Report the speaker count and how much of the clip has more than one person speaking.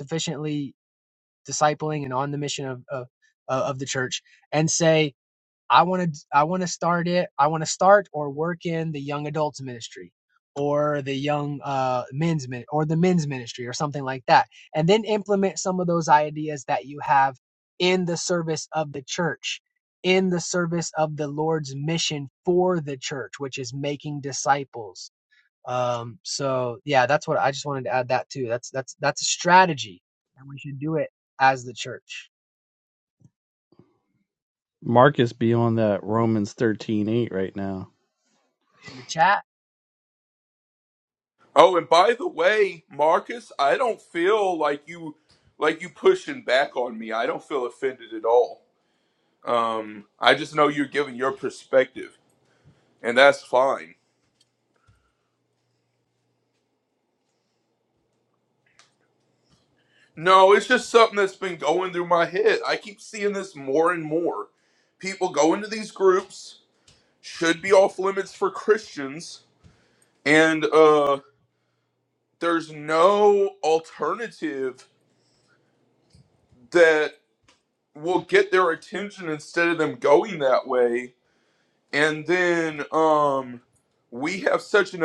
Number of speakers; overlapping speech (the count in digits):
3, no overlap